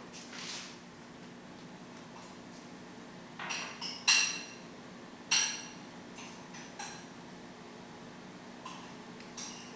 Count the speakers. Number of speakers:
zero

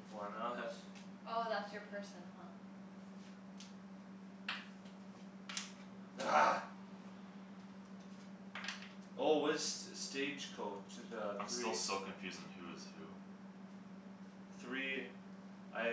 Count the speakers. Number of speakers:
three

